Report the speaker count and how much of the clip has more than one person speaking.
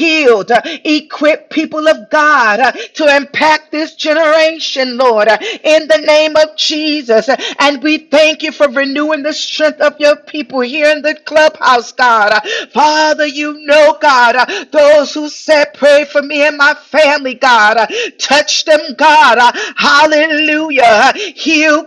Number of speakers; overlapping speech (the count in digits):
1, no overlap